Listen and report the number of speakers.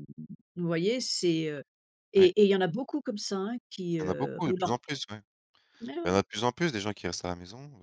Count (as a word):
two